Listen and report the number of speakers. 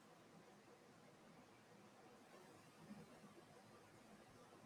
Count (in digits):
0